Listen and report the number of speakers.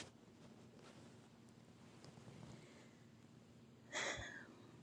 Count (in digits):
0